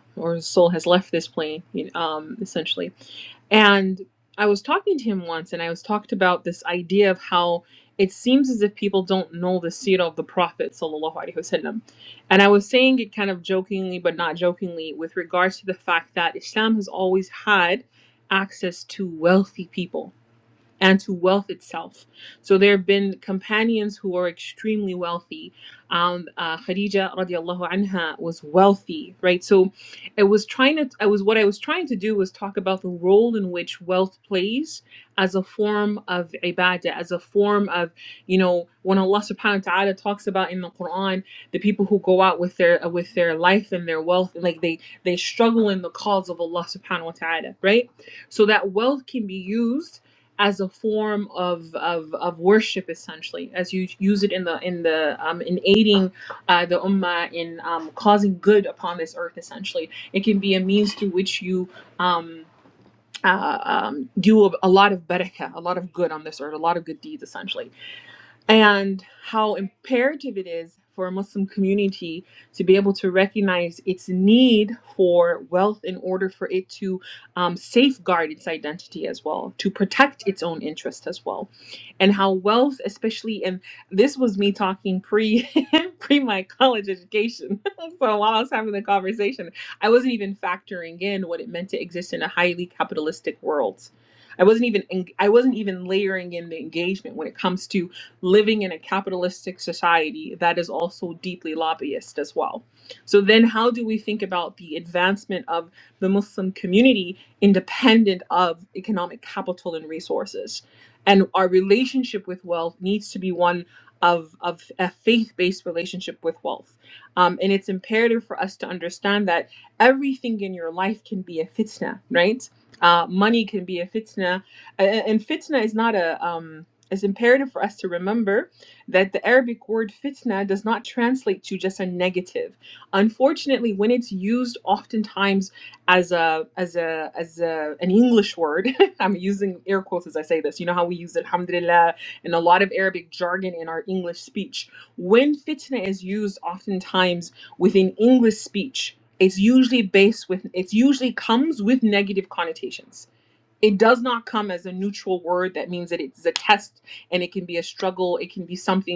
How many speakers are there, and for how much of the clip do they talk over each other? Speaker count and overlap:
one, no overlap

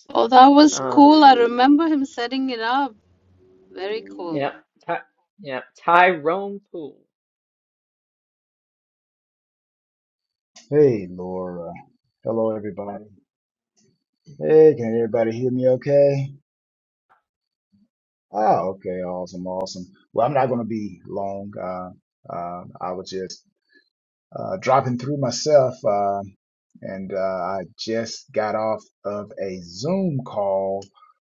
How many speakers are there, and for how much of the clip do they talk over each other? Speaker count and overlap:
three, about 1%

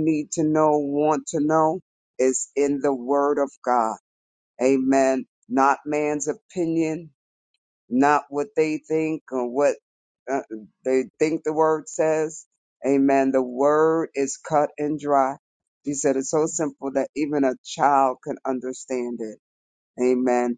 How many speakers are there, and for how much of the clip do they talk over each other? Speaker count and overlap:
one, no overlap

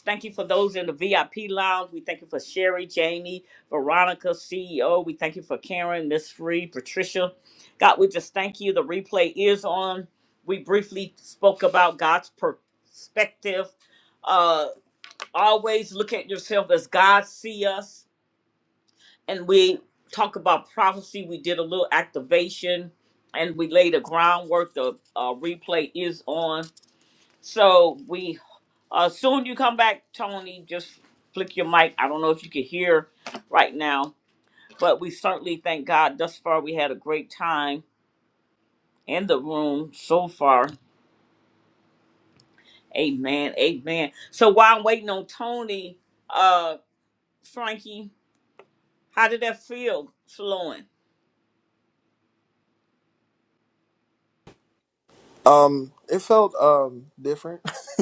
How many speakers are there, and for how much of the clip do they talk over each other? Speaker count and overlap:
two, no overlap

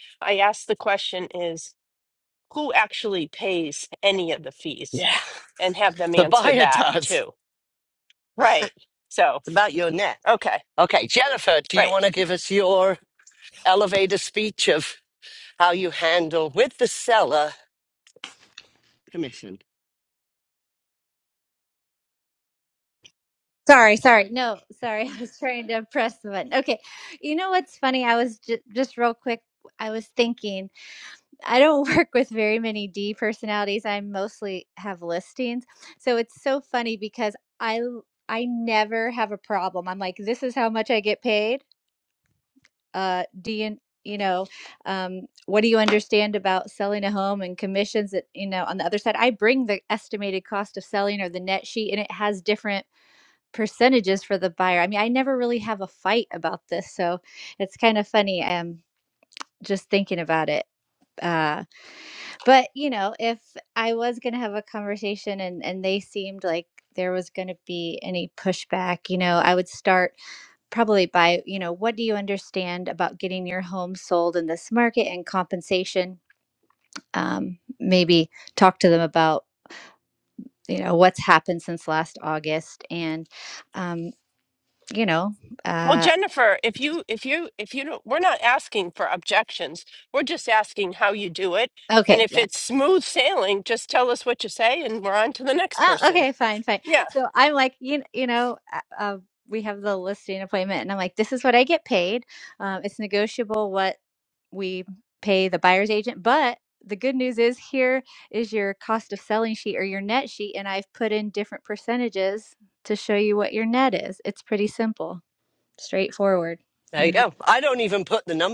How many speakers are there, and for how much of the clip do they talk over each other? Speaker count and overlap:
three, about 2%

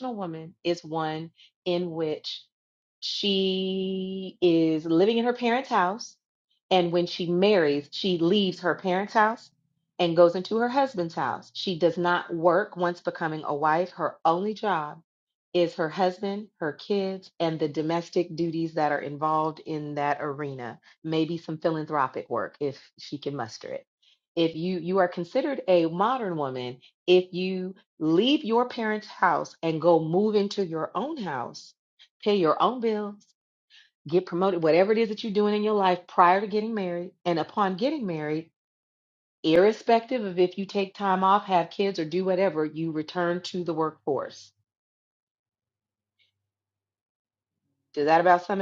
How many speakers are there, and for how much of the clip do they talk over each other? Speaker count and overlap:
one, no overlap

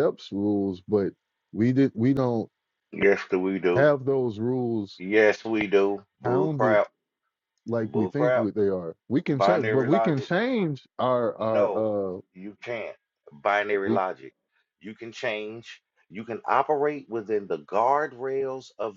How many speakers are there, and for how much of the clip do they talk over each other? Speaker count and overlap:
two, about 15%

